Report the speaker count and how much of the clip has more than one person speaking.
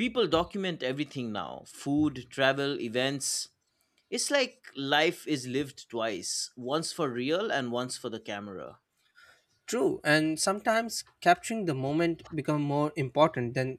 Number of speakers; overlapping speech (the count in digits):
2, no overlap